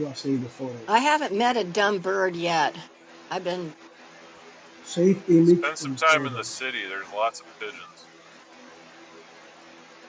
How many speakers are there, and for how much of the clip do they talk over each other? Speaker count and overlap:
3, about 7%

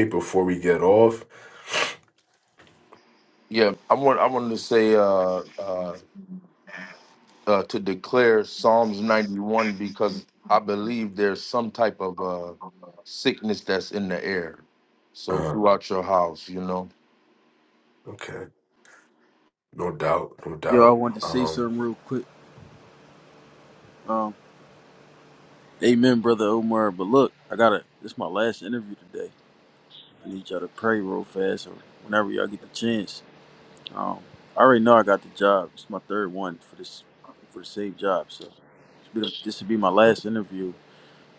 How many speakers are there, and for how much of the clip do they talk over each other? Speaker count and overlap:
3, about 3%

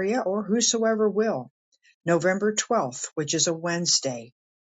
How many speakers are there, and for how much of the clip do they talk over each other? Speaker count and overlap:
1, no overlap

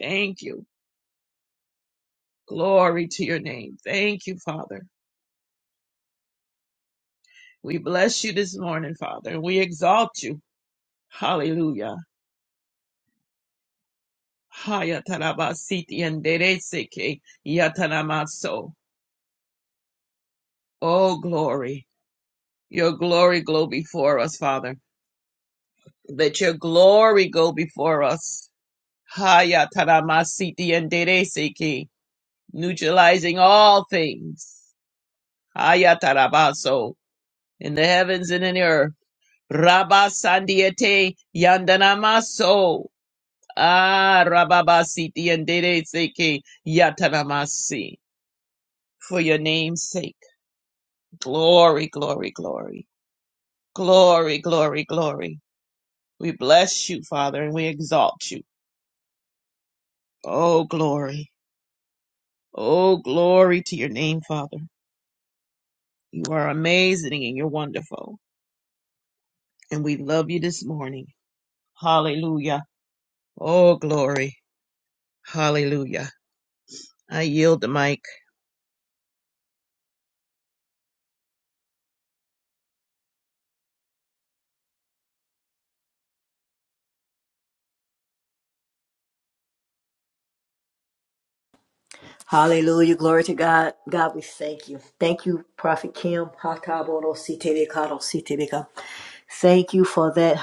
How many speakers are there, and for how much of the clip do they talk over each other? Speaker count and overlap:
2, no overlap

